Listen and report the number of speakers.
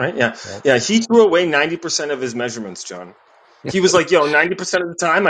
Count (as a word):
one